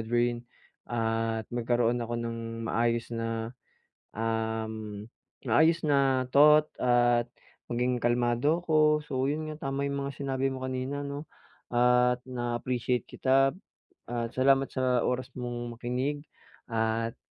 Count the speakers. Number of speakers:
1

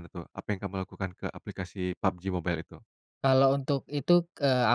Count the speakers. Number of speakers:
2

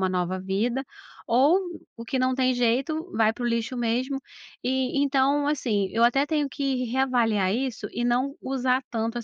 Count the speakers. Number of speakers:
1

